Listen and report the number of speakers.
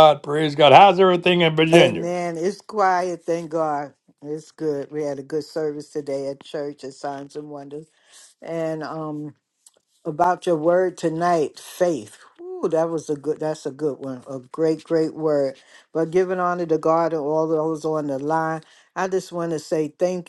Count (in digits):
2